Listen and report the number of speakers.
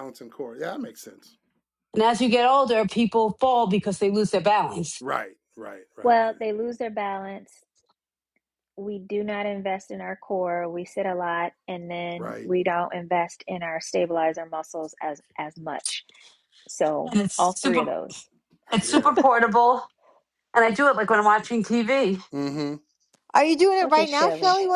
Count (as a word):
four